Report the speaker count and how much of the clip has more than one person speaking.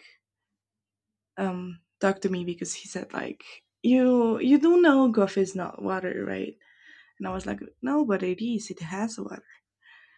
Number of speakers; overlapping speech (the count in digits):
1, no overlap